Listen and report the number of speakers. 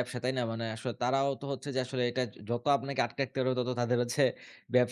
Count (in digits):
1